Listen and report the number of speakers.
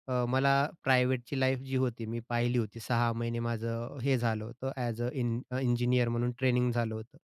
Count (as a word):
one